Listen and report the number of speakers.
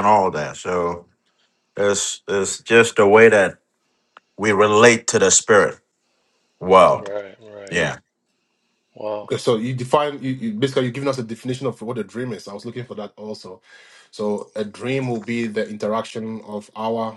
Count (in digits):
3